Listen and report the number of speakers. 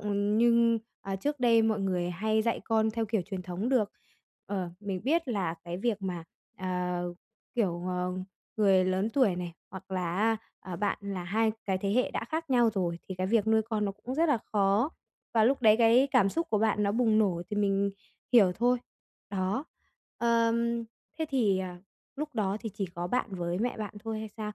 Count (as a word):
one